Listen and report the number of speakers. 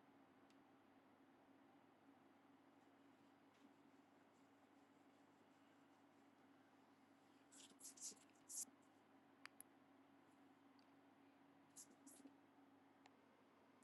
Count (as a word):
zero